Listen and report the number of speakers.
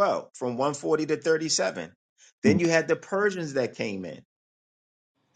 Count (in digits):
1